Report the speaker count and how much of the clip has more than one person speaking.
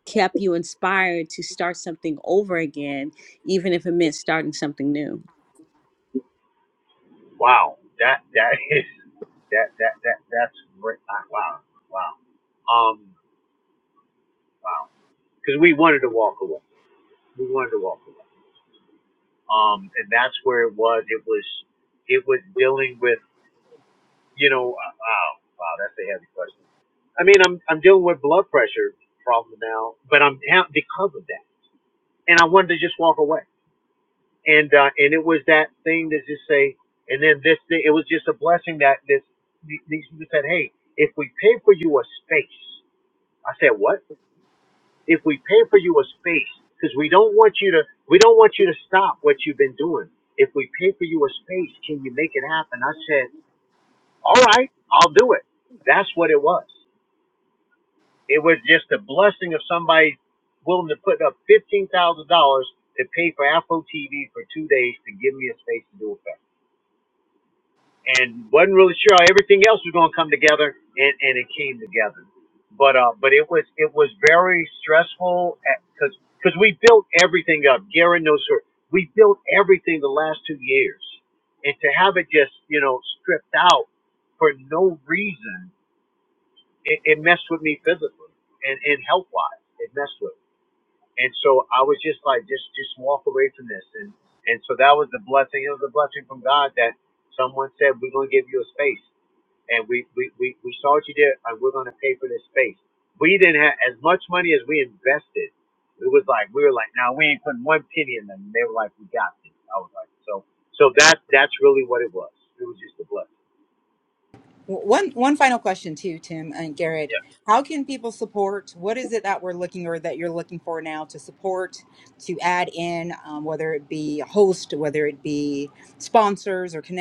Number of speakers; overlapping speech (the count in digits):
3, no overlap